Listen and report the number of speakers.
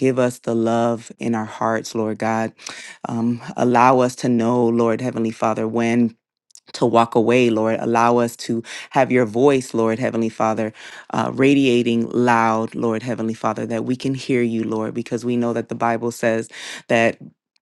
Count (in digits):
1